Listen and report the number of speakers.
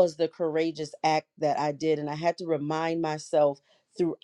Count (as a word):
one